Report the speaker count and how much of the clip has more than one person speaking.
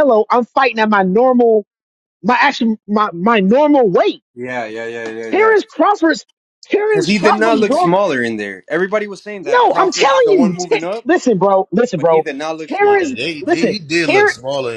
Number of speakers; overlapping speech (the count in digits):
3, about 31%